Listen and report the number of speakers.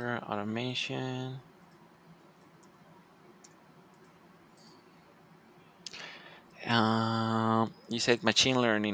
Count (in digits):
1